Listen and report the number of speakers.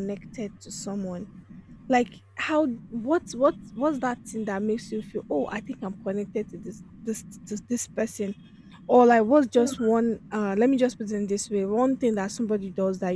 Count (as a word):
one